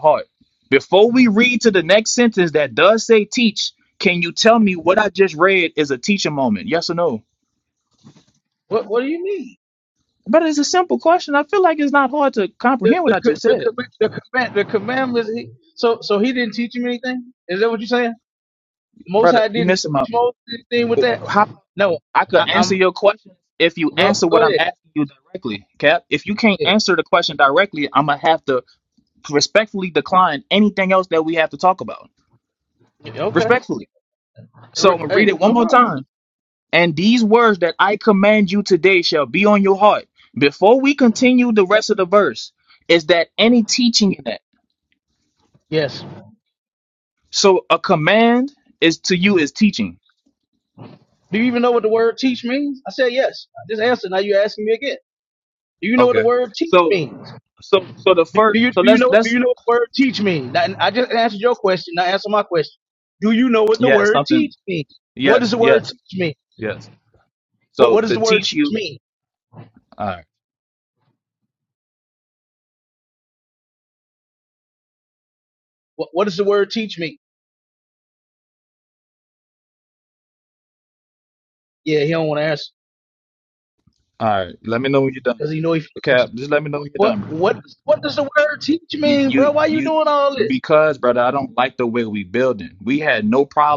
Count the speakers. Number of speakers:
2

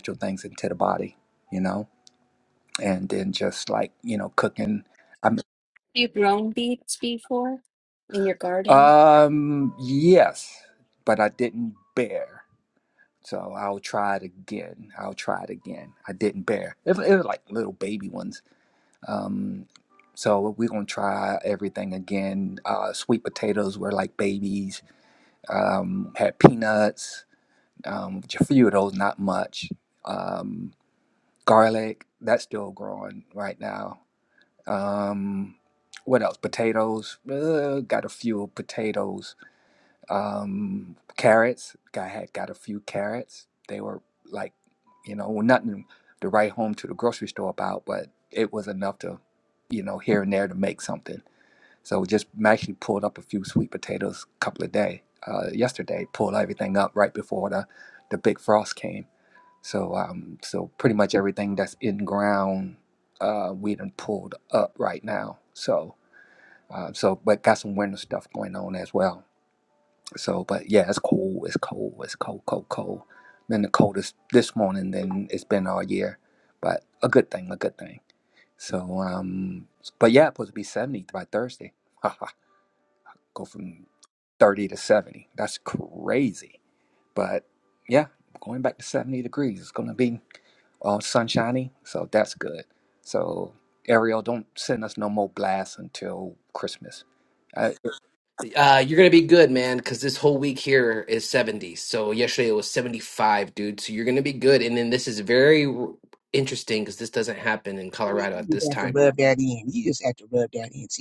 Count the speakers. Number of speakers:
4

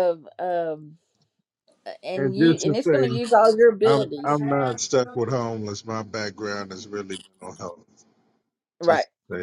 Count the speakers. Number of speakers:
2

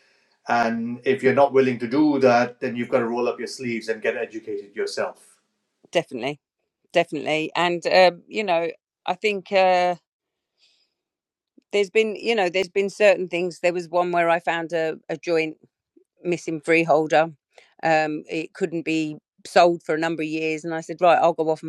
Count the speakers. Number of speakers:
2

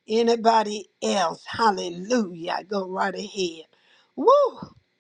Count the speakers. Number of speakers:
1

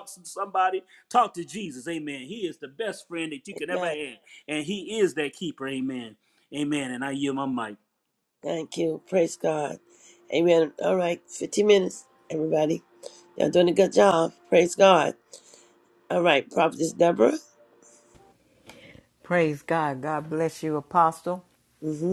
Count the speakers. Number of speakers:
3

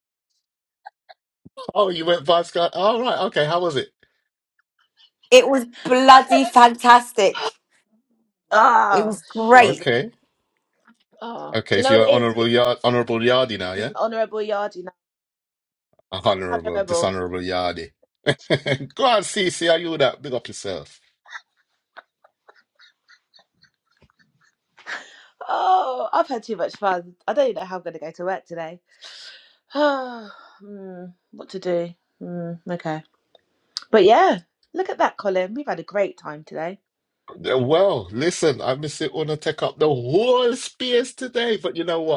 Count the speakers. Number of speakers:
3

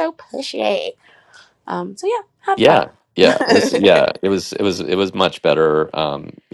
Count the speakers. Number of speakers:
2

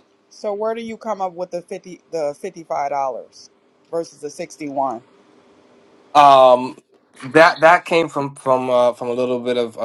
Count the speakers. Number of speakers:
2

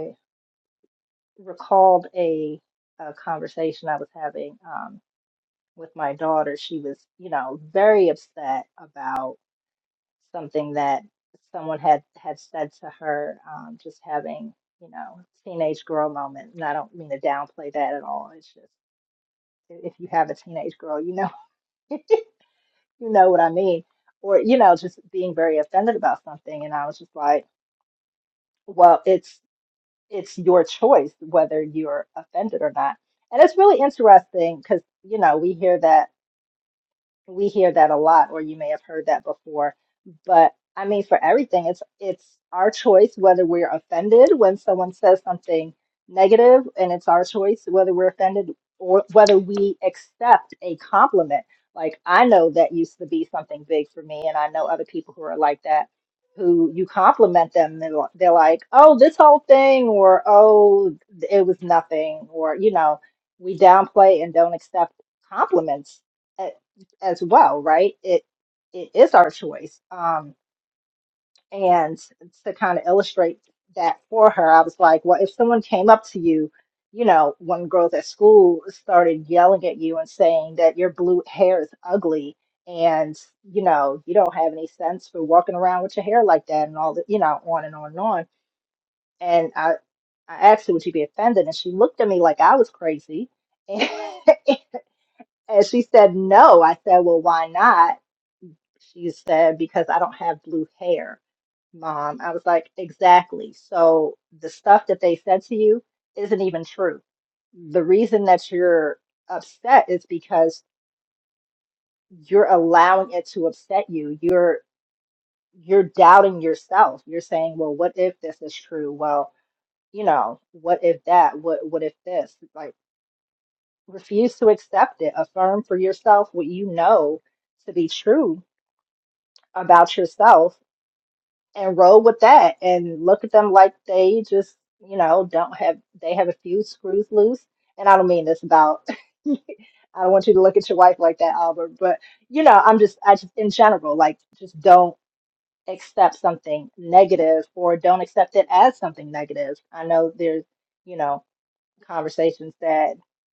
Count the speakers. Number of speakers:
1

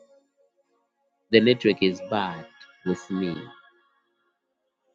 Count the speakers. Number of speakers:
1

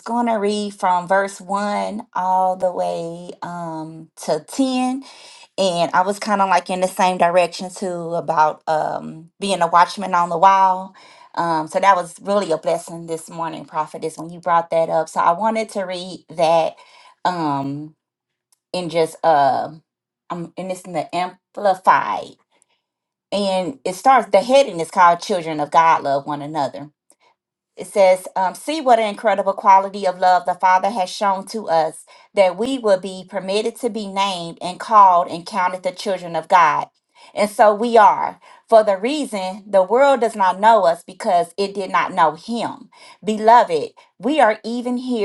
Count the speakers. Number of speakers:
1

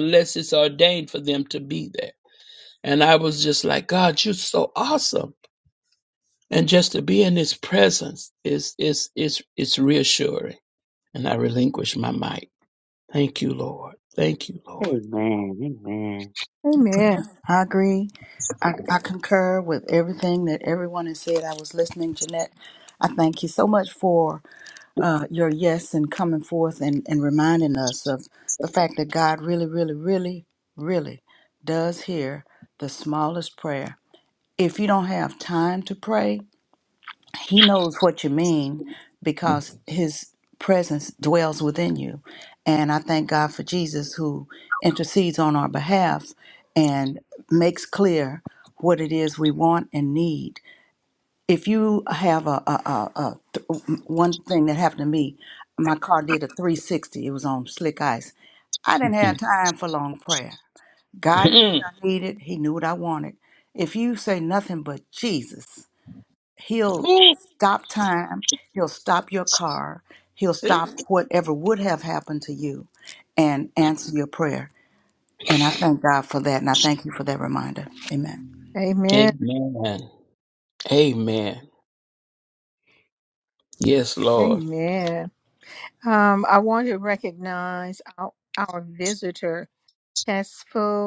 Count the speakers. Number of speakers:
4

